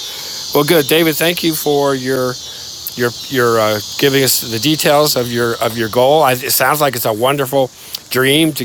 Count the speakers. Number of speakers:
one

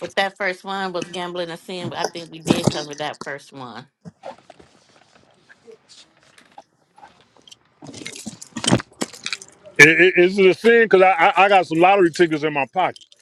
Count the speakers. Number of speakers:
two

